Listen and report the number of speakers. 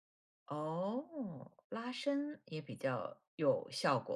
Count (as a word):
one